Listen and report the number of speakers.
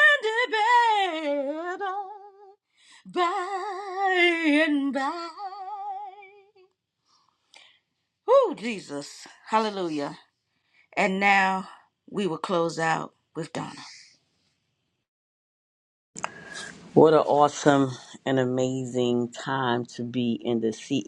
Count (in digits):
2